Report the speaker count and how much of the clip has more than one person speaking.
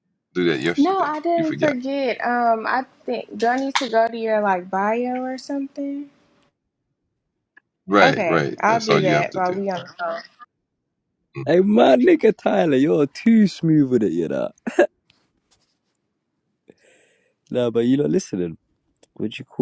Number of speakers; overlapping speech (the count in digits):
3, about 13%